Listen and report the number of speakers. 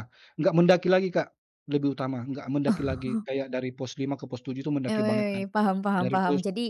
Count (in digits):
2